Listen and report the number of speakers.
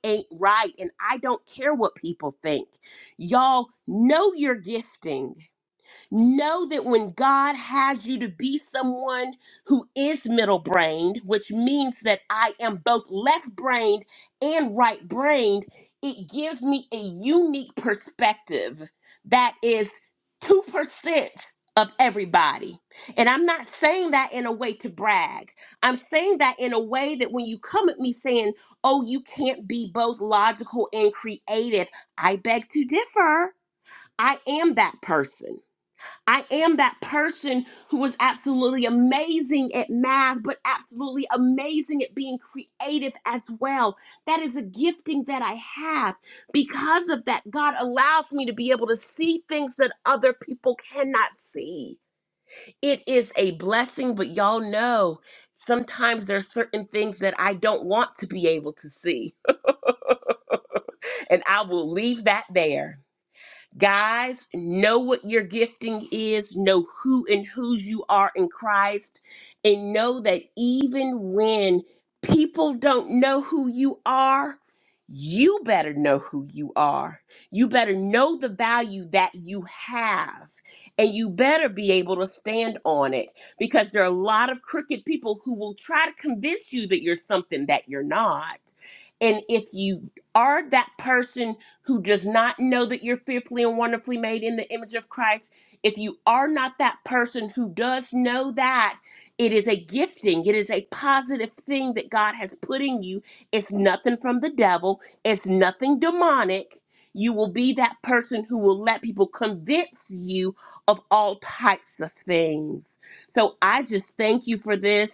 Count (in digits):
1